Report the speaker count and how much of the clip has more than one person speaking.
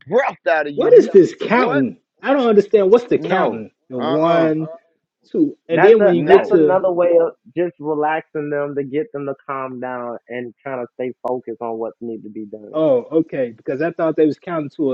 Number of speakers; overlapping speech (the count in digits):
3, about 18%